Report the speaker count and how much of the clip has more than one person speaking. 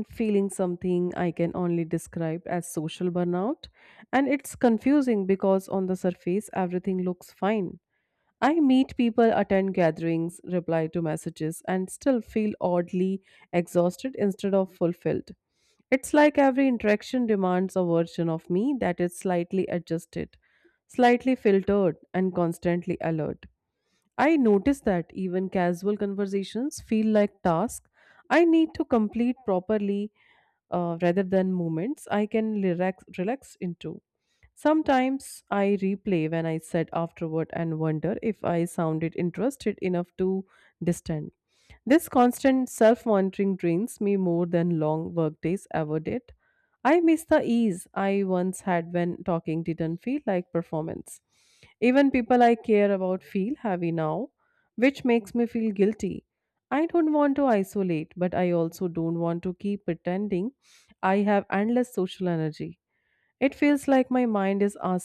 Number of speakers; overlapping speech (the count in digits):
1, no overlap